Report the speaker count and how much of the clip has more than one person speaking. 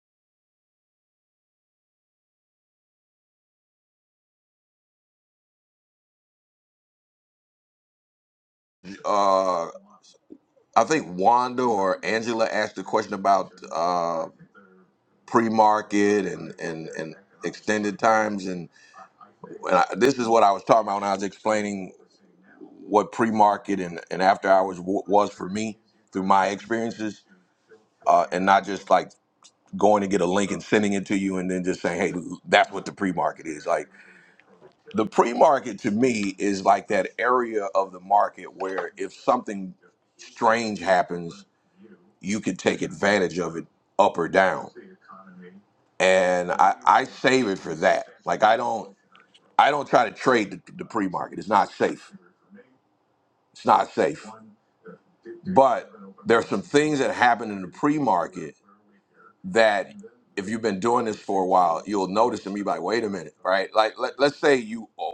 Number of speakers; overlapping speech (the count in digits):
1, no overlap